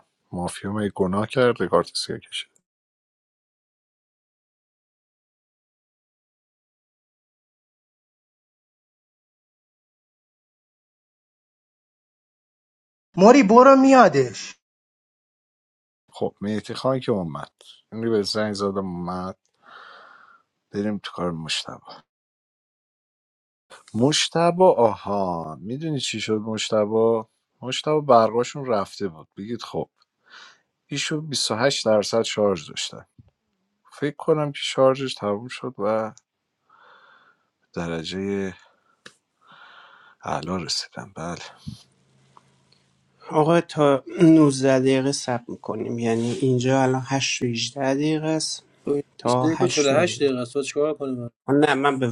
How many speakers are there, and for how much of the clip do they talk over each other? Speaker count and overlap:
four, about 2%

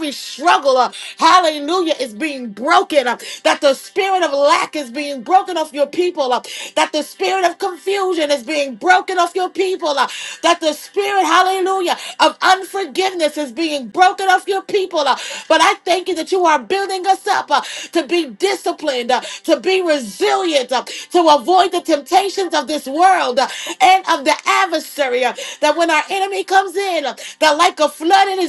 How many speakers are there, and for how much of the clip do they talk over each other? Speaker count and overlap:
one, no overlap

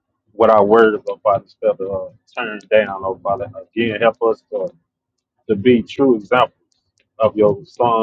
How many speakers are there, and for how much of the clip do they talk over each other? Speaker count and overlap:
one, no overlap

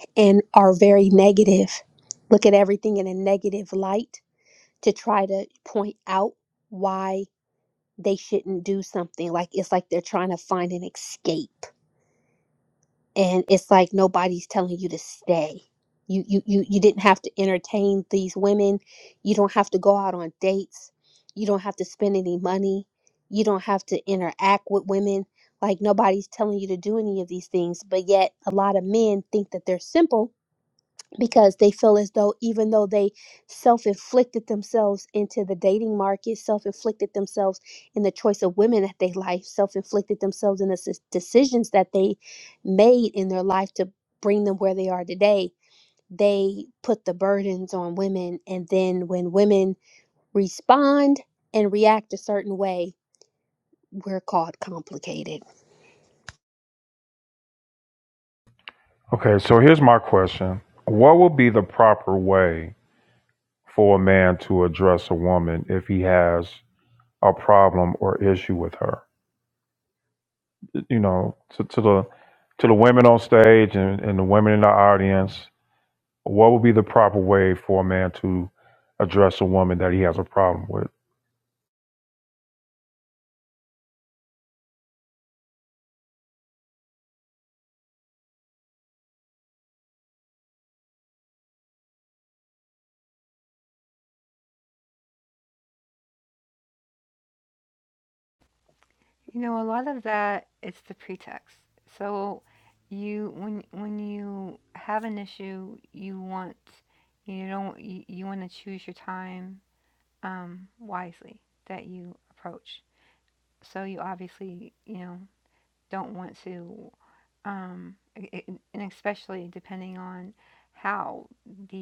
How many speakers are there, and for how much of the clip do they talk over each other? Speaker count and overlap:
three, no overlap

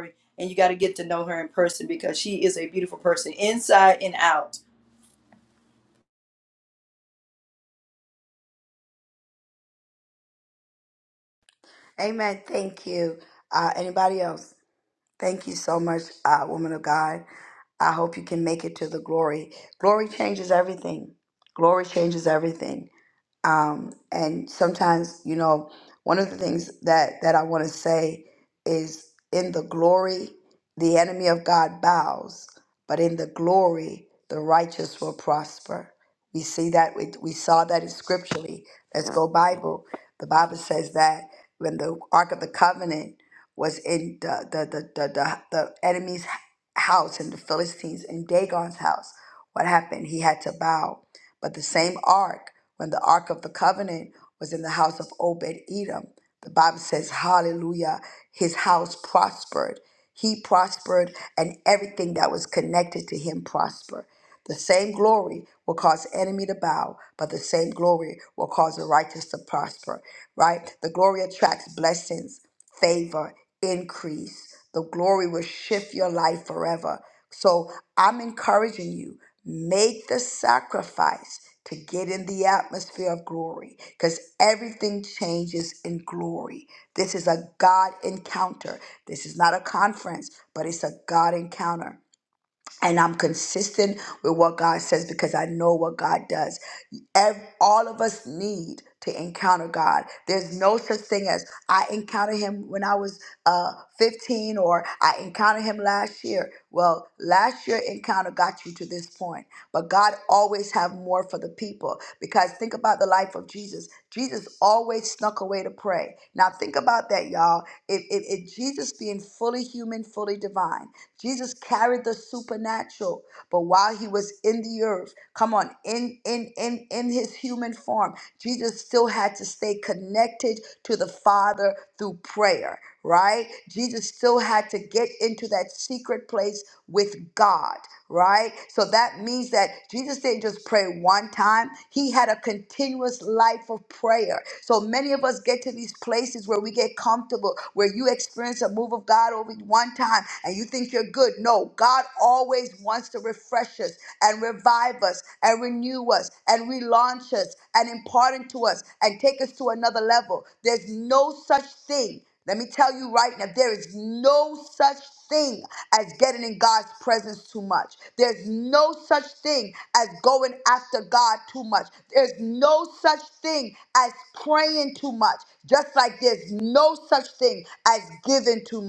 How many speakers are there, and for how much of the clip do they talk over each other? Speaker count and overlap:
two, no overlap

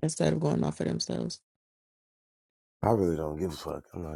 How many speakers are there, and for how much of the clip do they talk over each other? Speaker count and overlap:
two, no overlap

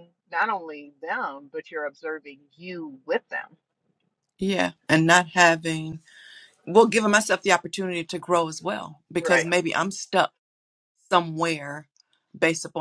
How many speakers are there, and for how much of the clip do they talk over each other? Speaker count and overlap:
two, about 2%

